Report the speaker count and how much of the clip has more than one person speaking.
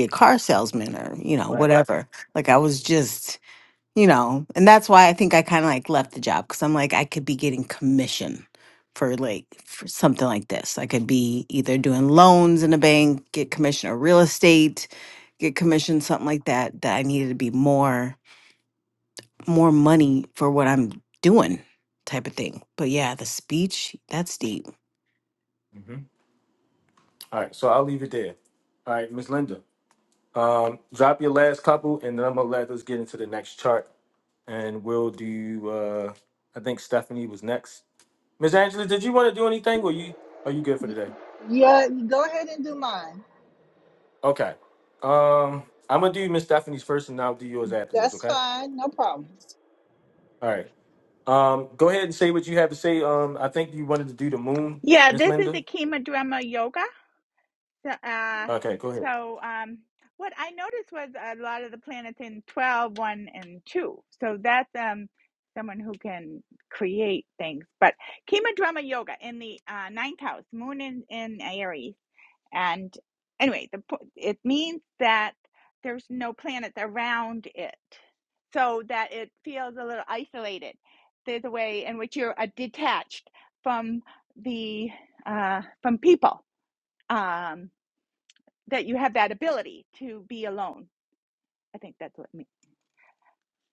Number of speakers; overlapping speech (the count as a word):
four, about 2%